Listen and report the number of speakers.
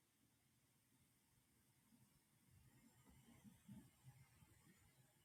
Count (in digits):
0